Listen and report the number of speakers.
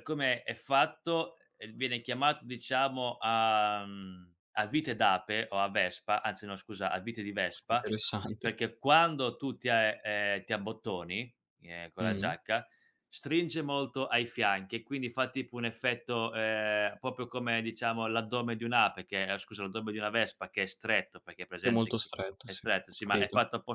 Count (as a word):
two